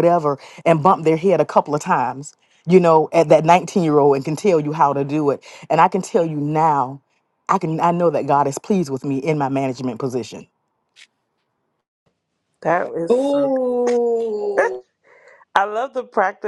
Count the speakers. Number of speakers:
3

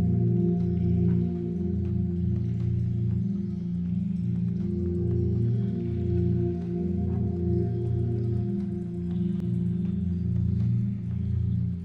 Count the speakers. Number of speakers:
0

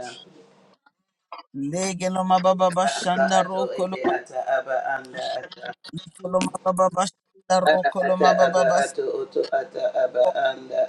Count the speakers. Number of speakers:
2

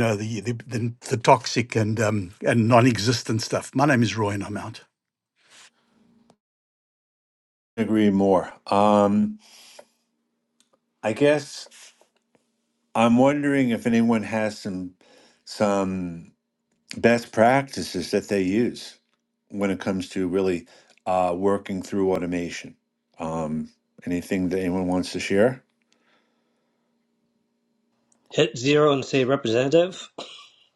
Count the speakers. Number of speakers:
3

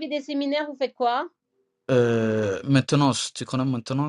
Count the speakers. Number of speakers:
2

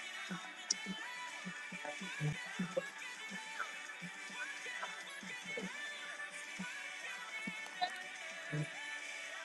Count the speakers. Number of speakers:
0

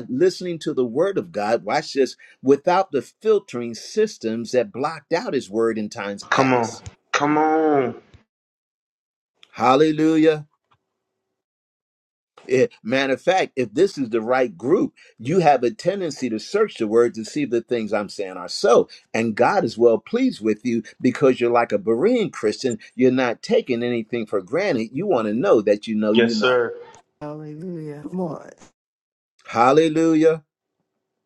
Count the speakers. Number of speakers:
3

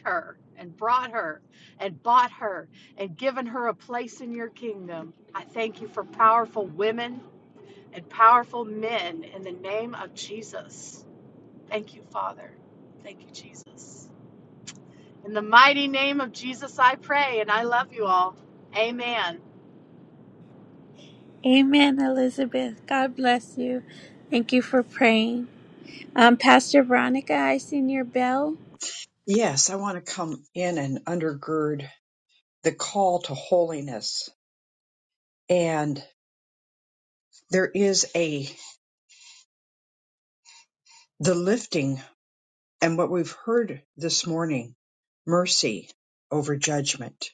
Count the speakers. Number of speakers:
3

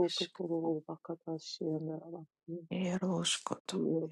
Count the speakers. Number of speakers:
2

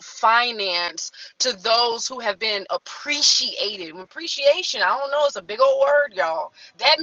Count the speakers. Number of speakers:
1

